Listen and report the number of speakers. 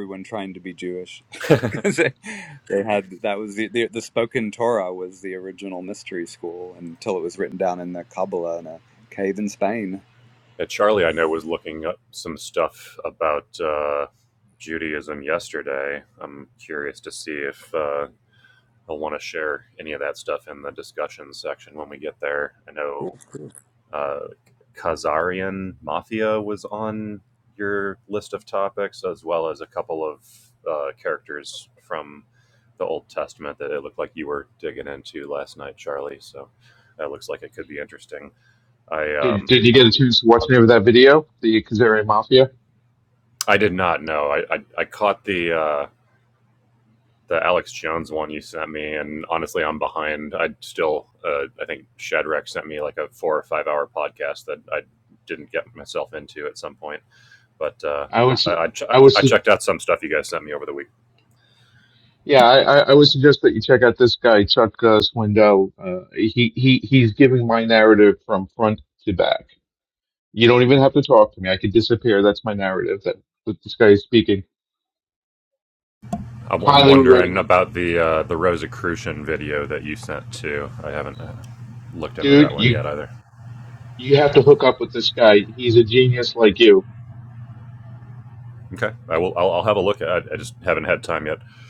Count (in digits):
3